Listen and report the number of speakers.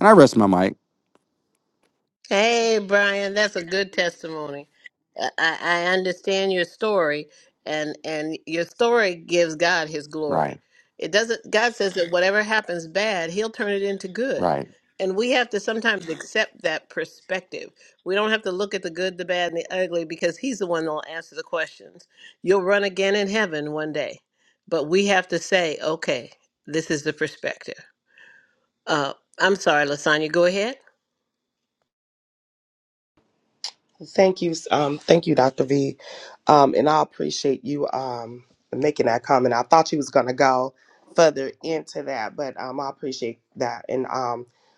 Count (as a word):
three